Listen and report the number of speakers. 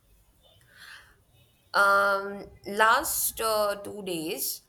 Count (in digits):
1